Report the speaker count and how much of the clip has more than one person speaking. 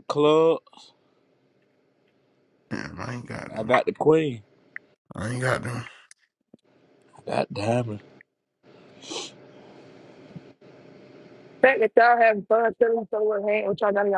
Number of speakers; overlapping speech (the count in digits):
3, about 1%